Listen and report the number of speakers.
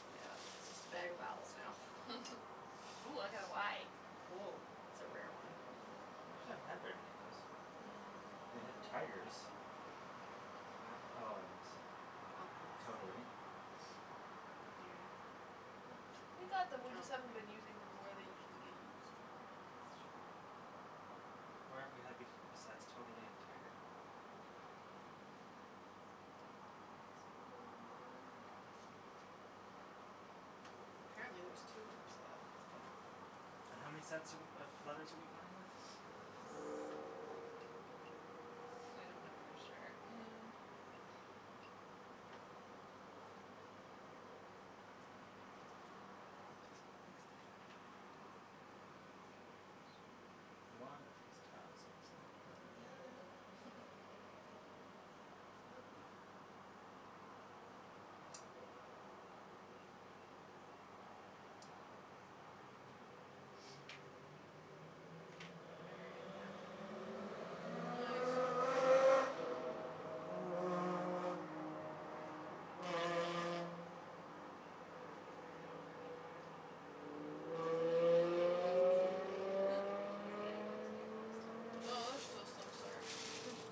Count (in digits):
4